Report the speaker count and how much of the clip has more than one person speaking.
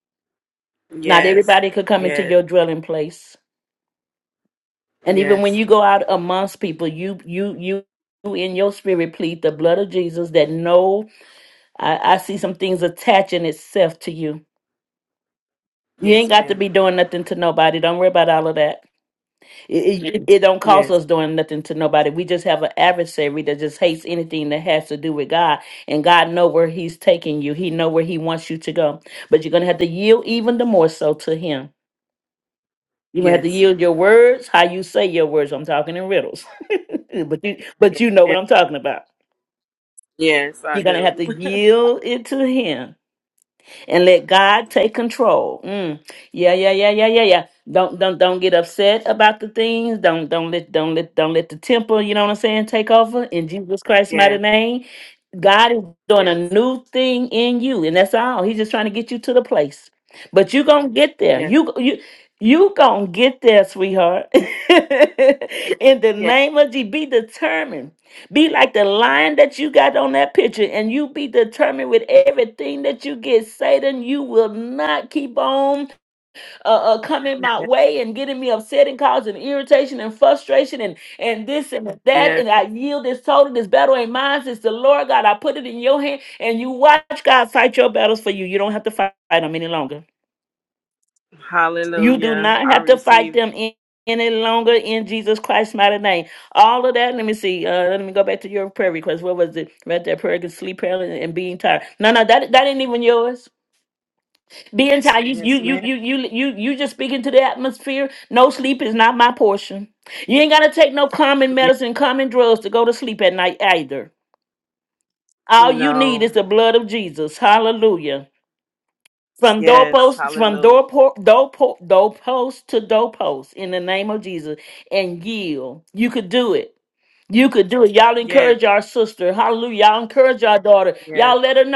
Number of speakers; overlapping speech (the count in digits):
2, about 7%